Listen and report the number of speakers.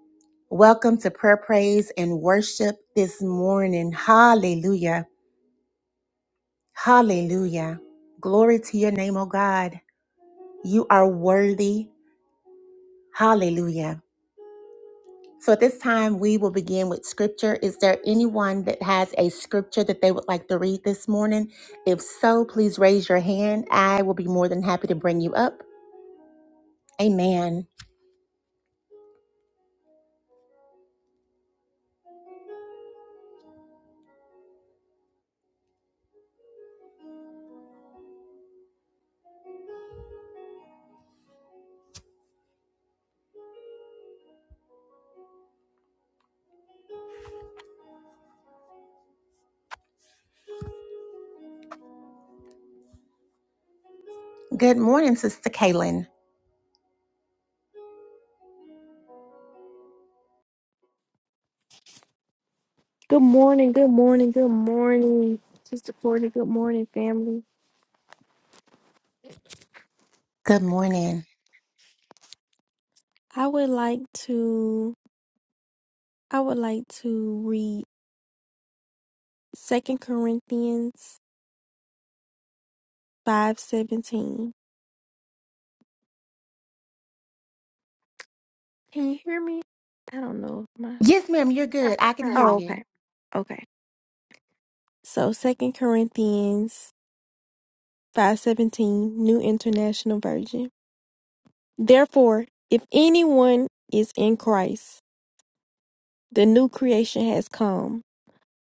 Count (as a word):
two